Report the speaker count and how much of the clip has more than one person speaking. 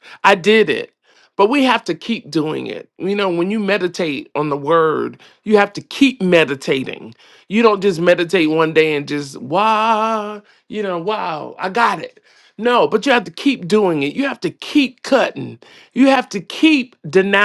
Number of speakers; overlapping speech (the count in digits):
1, no overlap